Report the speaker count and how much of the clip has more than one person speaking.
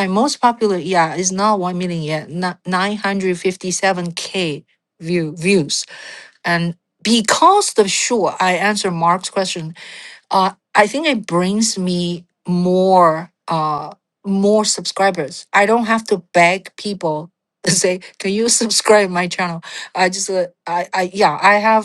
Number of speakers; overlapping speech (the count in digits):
1, no overlap